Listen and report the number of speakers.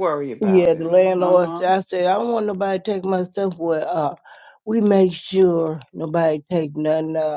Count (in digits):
2